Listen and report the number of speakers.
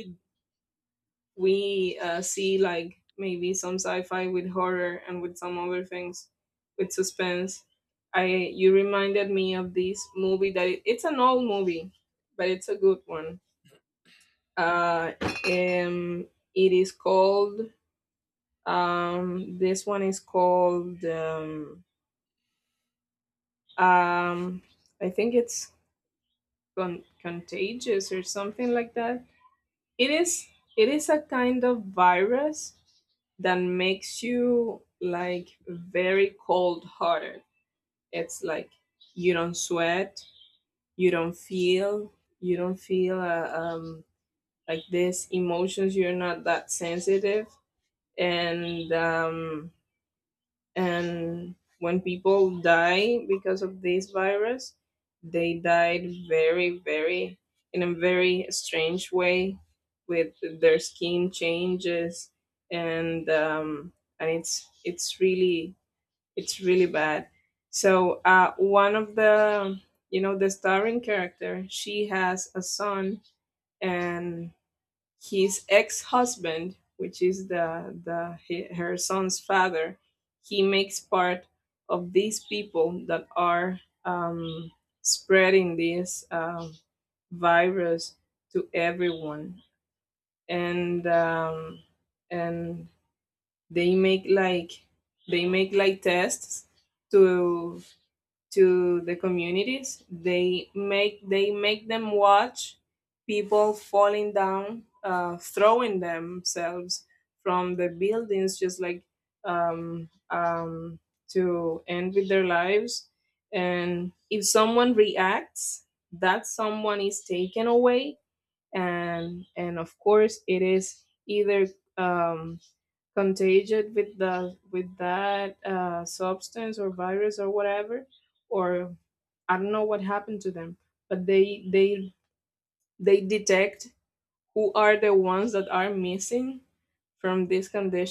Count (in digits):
1